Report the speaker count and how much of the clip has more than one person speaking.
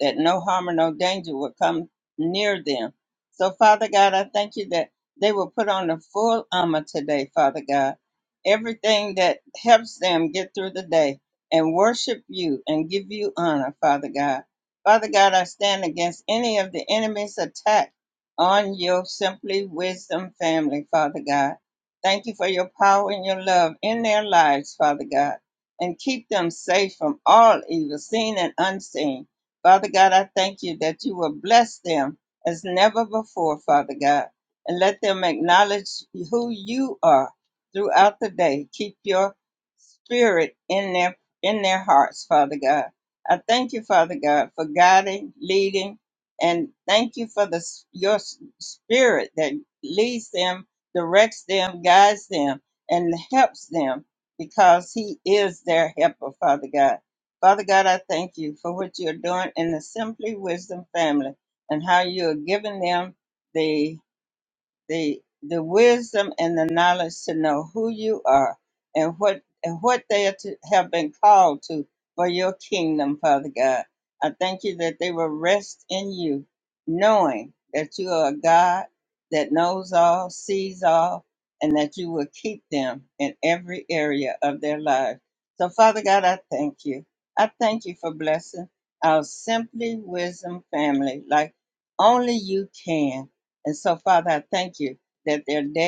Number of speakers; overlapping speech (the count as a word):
one, no overlap